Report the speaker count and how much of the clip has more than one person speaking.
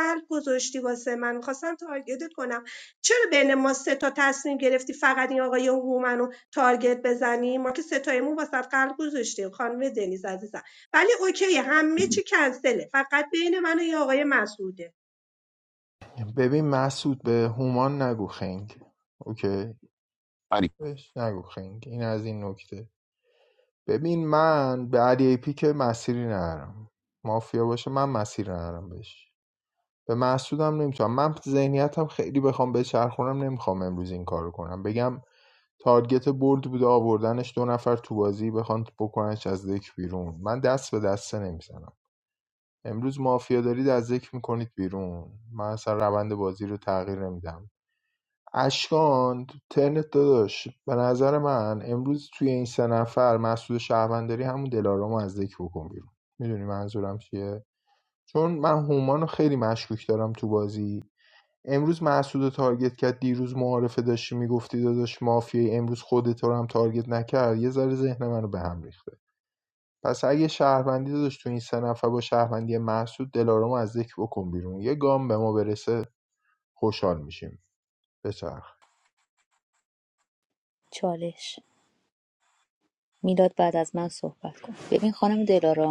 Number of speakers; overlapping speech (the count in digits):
3, no overlap